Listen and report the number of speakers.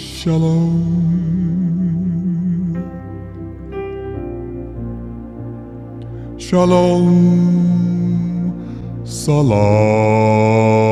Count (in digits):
1